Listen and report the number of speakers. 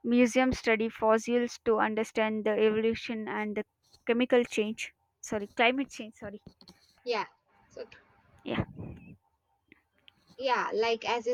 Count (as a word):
two